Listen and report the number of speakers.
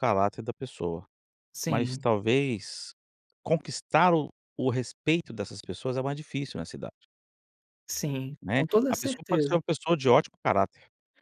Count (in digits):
2